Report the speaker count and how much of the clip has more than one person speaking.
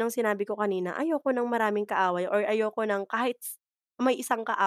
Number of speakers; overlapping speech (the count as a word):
one, no overlap